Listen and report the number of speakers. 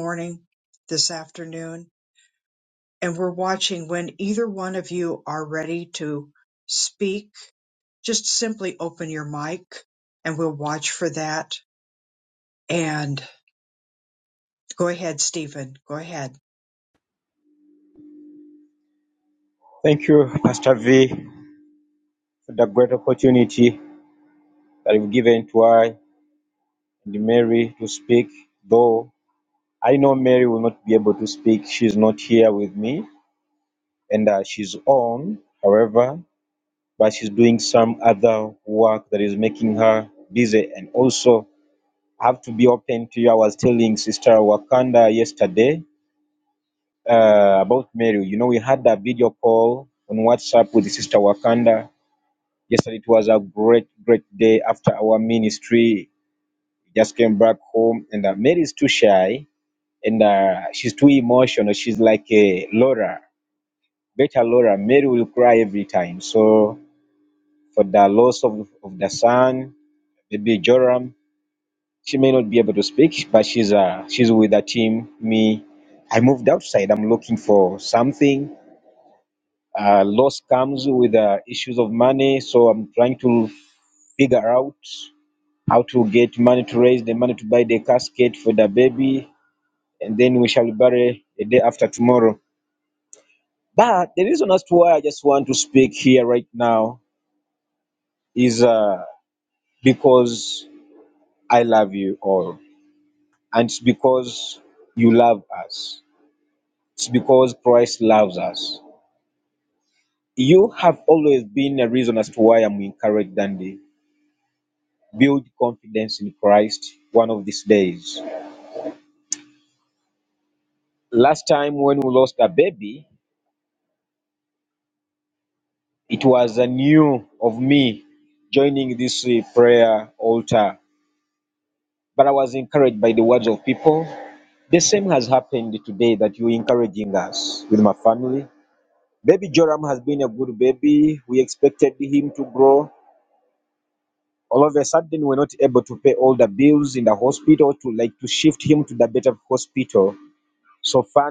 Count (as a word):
two